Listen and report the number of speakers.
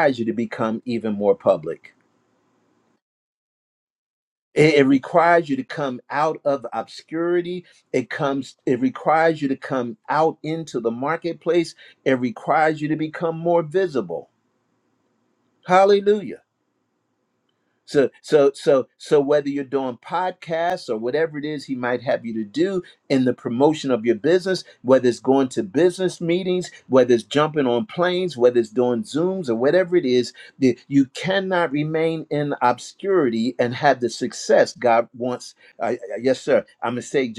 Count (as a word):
one